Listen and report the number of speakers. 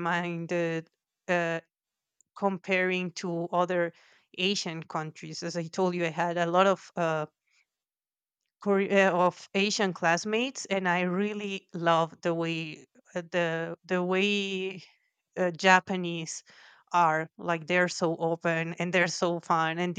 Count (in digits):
1